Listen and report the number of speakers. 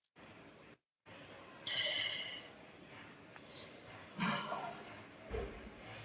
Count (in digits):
0